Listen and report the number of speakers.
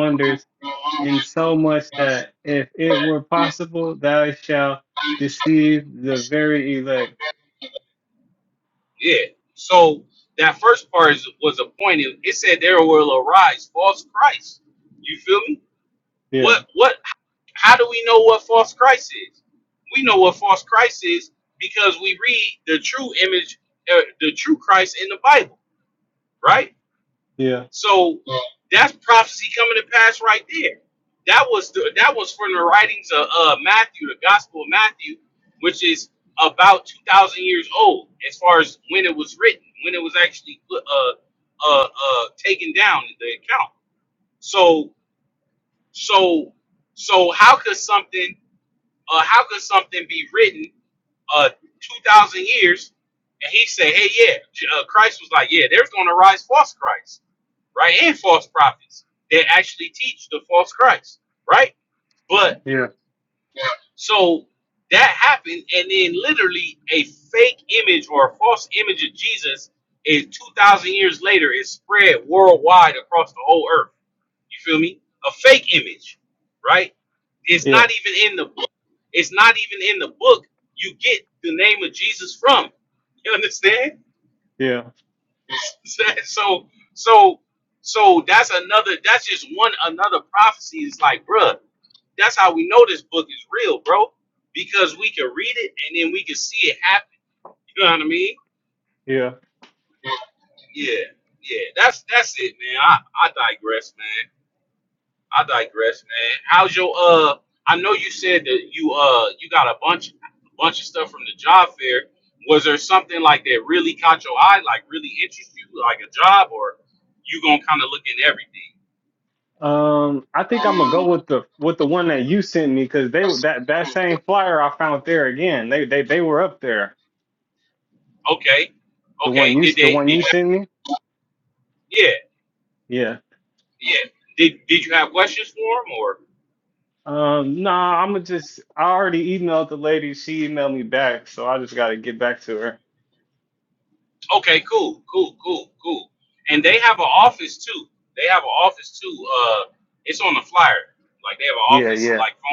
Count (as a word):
two